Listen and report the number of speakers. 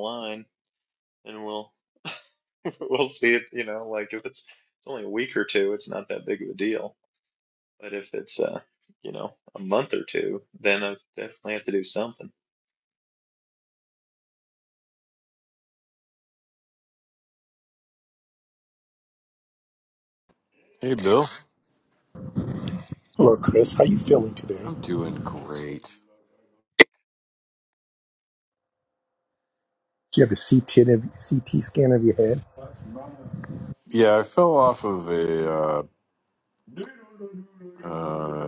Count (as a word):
three